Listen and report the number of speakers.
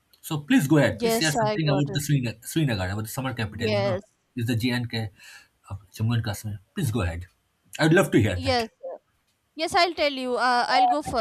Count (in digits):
2